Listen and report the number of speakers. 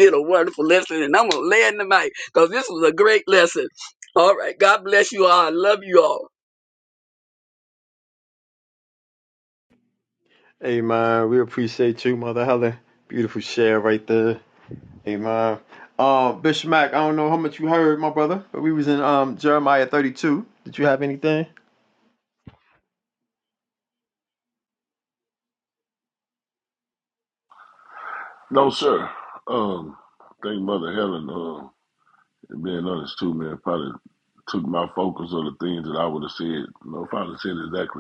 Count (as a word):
three